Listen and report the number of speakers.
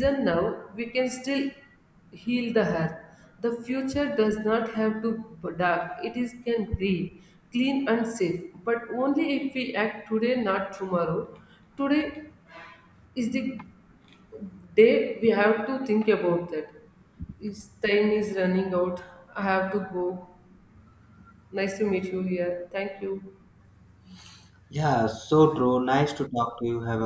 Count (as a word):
two